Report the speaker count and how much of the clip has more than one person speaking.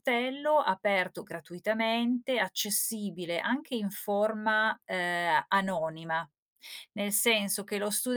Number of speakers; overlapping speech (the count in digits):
1, no overlap